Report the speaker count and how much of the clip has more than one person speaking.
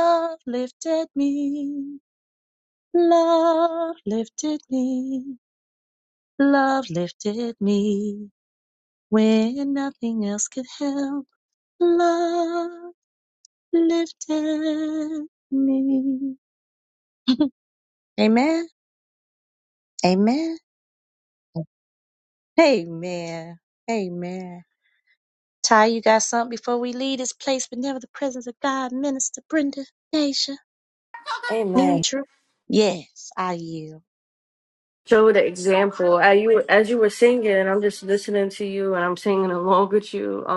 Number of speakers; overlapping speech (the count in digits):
2, about 1%